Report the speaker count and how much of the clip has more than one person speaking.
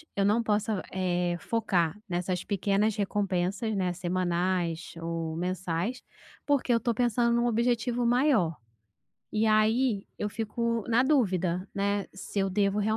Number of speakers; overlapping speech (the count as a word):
one, no overlap